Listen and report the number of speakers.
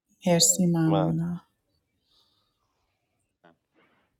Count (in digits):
1